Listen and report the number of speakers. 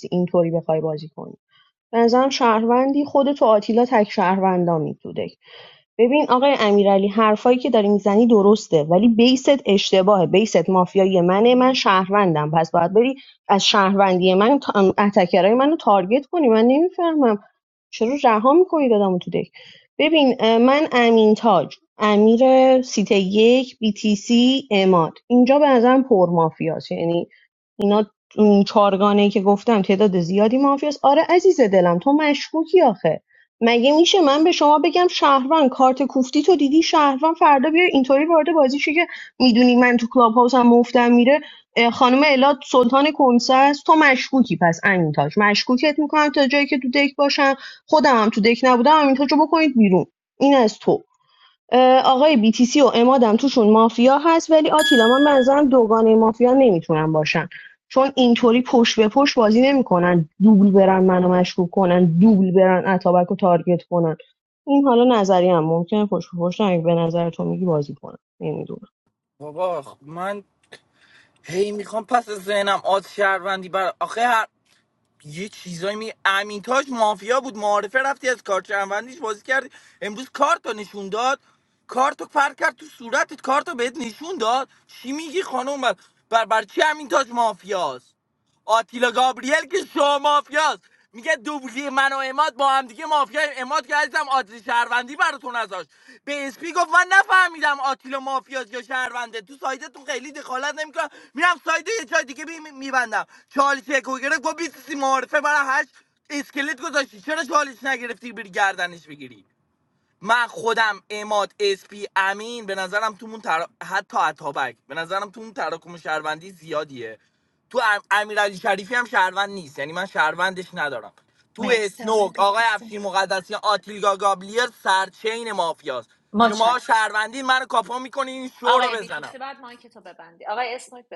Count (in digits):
3